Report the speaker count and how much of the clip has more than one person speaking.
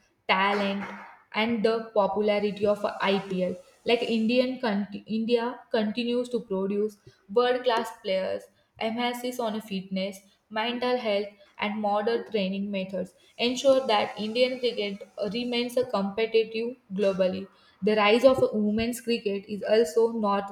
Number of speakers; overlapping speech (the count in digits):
1, no overlap